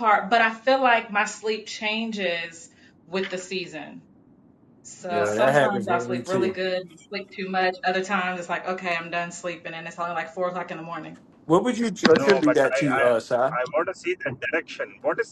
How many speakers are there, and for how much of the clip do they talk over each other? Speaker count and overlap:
3, about 16%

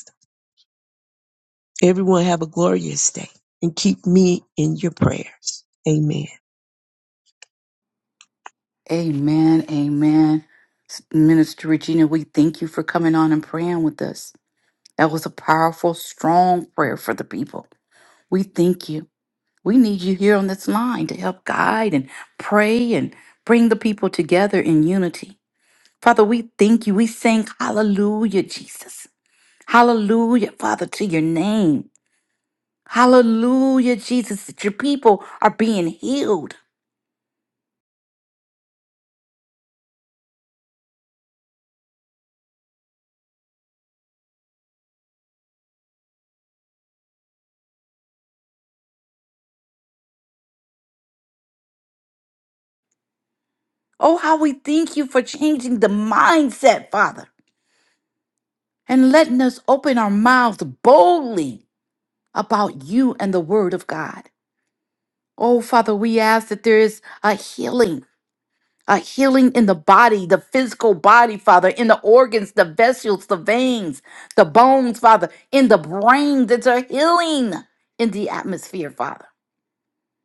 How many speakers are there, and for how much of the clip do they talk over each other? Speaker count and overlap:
2, no overlap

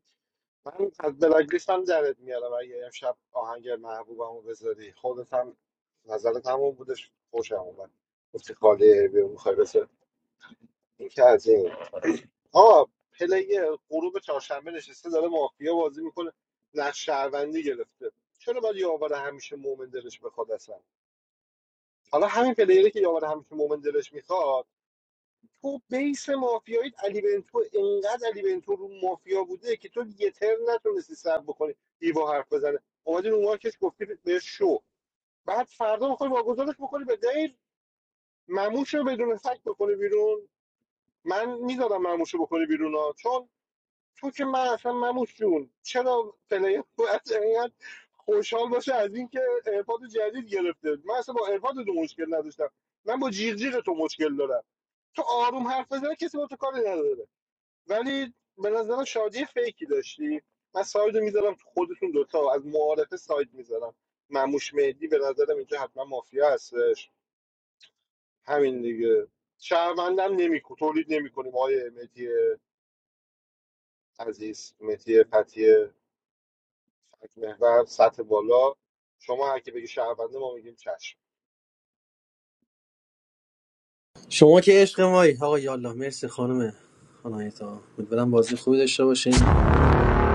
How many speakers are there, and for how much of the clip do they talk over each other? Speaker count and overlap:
2, no overlap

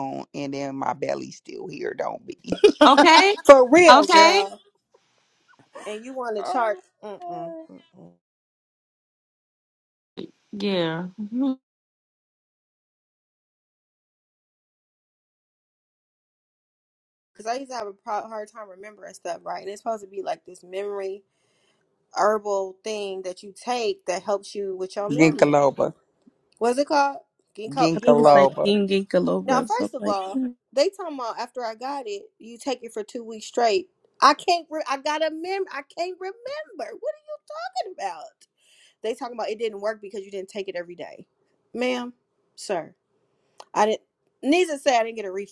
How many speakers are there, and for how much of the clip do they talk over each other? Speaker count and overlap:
4, about 9%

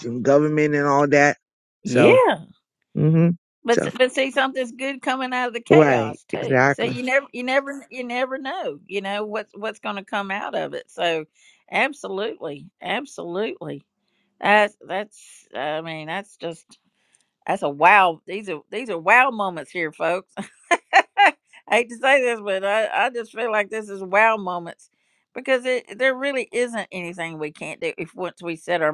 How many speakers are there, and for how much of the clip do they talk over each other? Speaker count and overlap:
2, about 6%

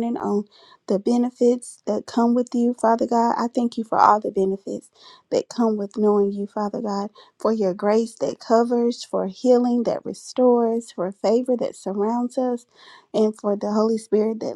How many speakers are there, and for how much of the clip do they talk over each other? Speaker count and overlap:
1, no overlap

